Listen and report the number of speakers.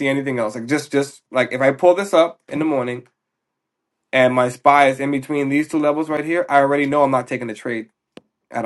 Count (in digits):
1